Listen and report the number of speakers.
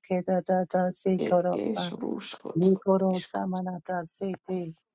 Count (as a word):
two